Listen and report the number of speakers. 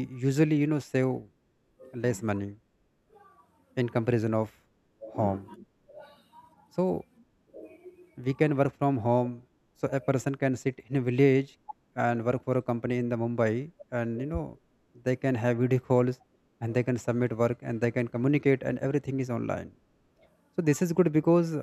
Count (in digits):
1